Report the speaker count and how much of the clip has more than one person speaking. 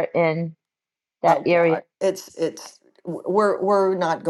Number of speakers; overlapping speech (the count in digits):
2, about 13%